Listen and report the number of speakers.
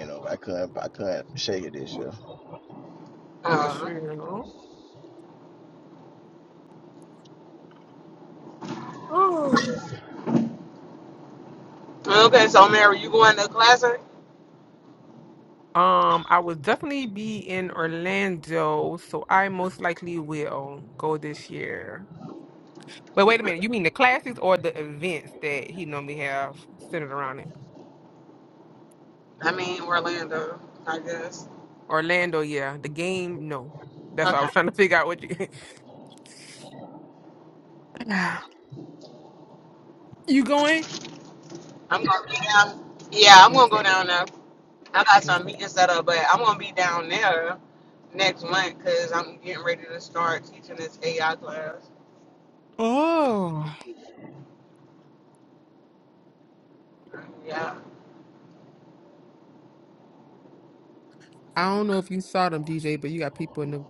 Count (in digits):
3